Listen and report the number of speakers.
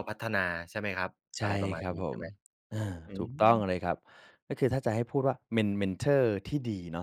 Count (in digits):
2